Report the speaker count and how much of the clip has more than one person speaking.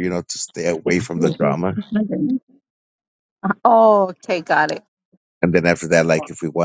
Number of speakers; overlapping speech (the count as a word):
two, about 2%